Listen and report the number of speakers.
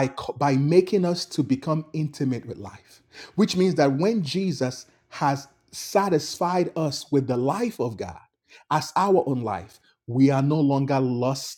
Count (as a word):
one